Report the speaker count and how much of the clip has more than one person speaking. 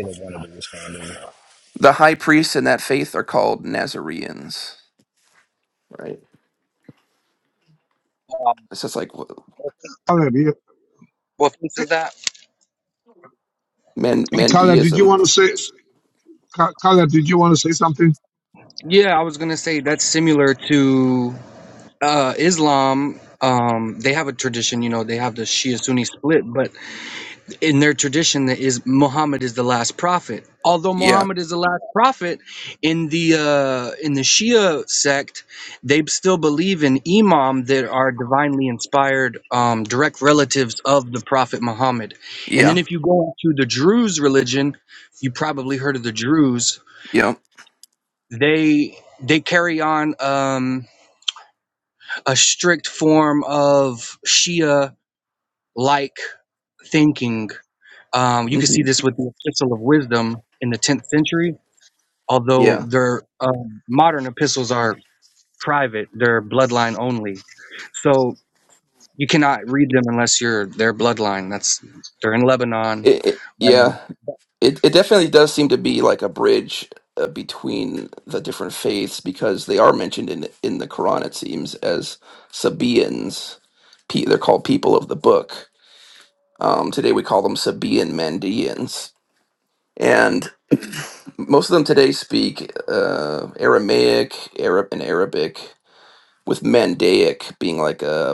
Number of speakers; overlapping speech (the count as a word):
four, about 3%